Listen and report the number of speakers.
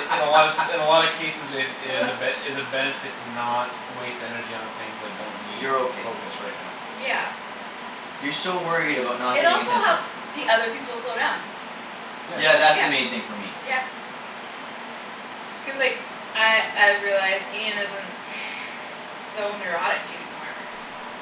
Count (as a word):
three